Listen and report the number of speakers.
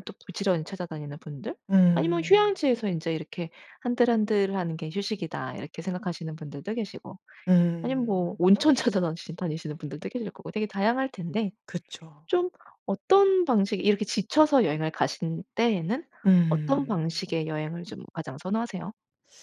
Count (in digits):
2